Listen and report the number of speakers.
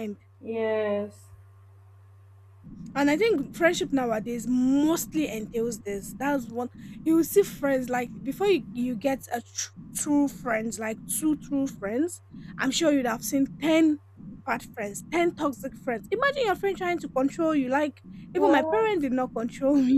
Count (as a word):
two